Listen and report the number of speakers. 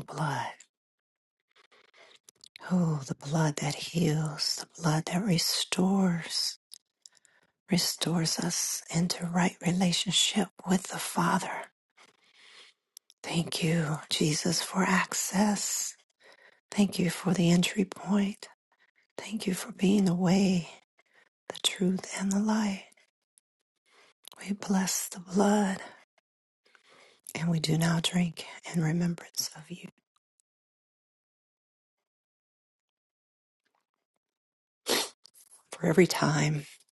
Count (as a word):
one